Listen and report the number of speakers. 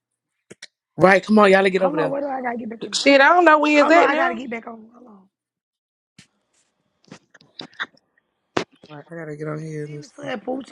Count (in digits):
3